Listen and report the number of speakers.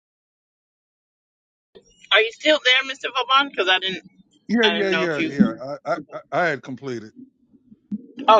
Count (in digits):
2